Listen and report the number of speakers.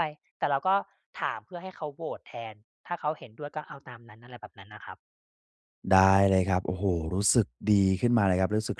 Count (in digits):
2